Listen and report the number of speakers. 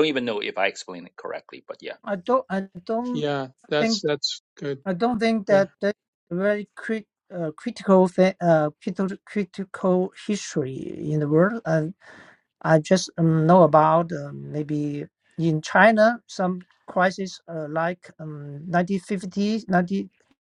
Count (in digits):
3